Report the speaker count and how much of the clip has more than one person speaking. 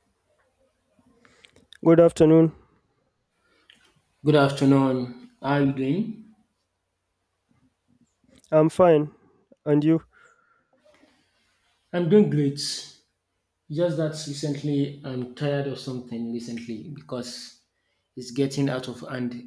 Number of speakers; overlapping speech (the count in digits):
2, no overlap